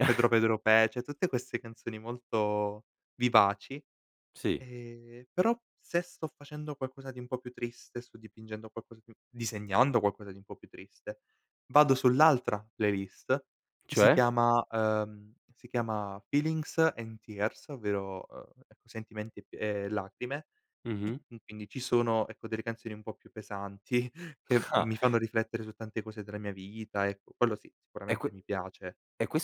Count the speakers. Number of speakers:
2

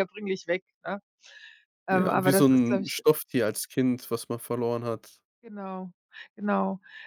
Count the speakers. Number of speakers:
2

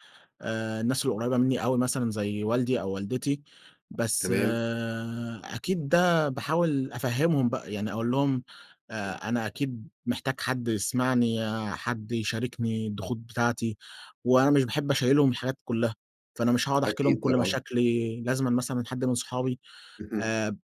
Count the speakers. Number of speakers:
2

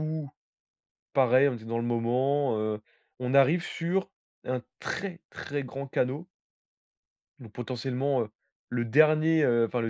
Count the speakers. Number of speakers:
1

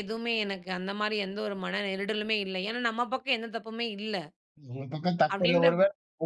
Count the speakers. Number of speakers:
2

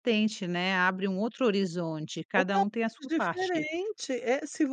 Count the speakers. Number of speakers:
2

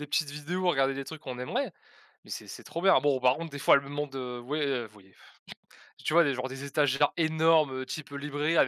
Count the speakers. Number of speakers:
1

